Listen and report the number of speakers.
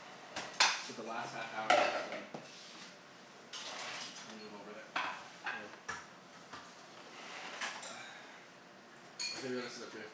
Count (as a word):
two